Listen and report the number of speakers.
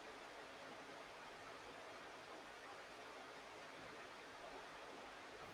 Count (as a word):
zero